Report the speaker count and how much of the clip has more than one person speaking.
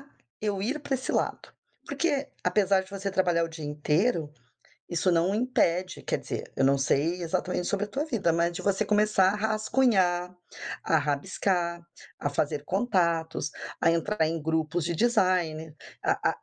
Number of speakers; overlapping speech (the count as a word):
one, no overlap